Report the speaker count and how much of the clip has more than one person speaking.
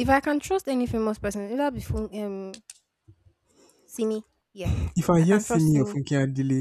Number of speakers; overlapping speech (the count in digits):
2, about 12%